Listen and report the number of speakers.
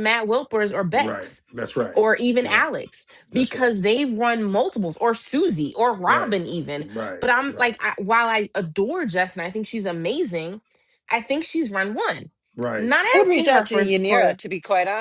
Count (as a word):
three